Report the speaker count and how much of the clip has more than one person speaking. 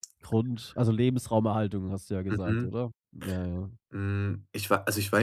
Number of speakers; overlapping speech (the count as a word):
two, about 7%